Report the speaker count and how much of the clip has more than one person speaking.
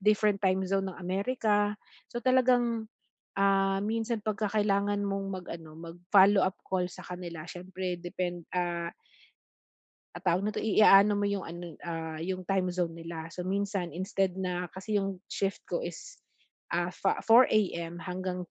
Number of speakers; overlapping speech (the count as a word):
one, no overlap